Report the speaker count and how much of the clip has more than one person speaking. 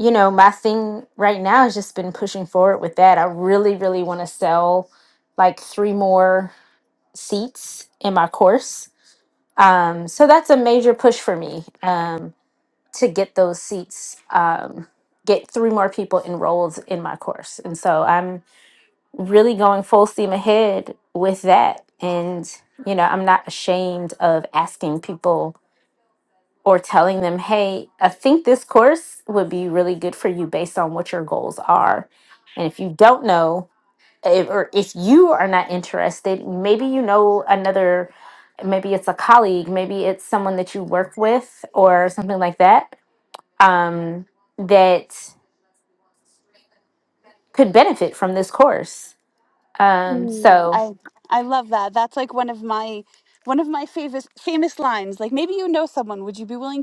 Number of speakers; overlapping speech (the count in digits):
2, under 1%